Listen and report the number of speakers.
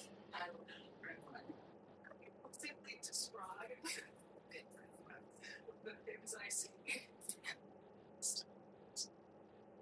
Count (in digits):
0